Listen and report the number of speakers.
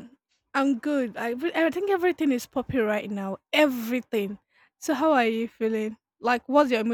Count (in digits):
1